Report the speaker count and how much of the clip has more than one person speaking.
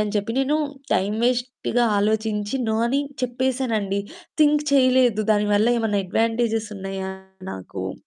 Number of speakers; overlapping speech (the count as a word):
one, no overlap